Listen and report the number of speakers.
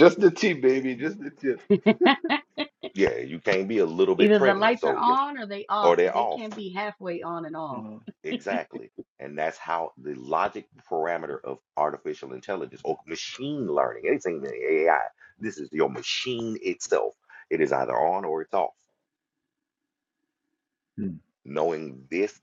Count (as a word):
three